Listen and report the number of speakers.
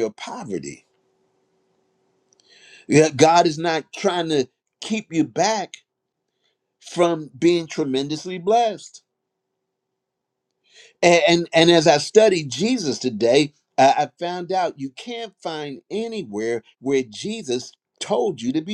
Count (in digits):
1